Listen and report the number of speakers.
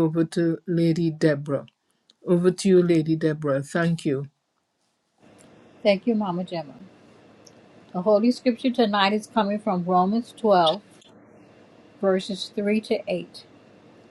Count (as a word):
two